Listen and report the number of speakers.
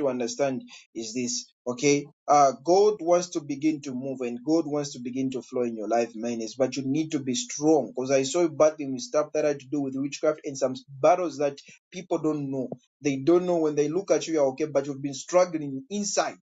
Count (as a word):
one